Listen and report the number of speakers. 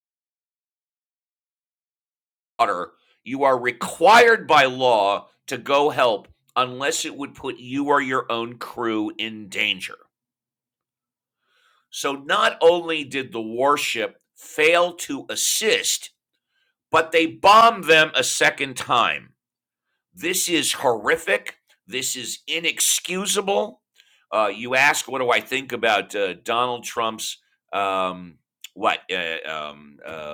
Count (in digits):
1